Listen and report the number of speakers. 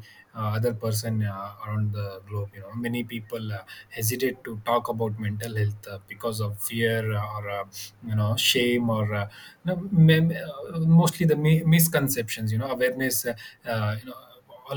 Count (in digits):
1